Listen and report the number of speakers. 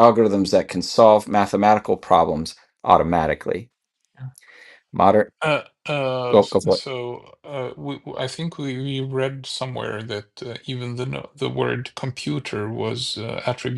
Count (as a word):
two